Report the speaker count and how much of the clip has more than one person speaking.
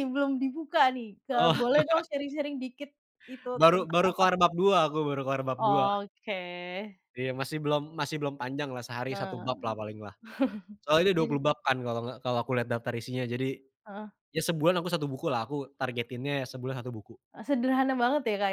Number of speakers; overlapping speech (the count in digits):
2, about 10%